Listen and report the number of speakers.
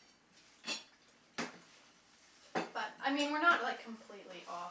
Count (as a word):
one